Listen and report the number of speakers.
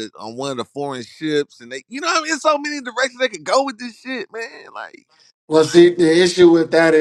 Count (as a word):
two